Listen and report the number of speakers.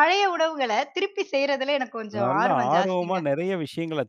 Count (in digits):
2